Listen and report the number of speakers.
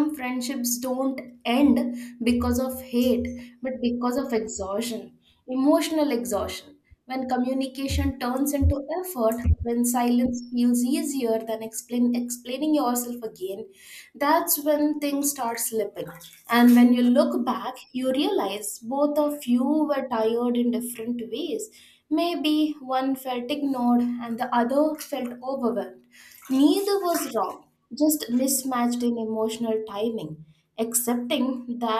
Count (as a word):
one